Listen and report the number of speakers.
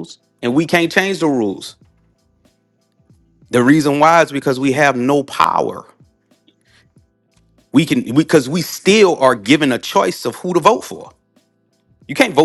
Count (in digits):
1